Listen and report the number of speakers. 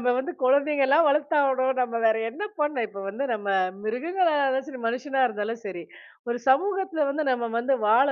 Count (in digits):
1